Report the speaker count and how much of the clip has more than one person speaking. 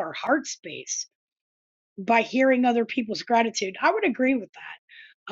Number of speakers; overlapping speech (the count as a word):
one, no overlap